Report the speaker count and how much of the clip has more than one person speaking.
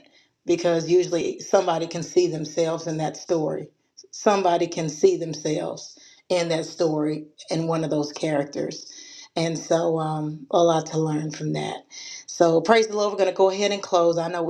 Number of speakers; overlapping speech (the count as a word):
one, no overlap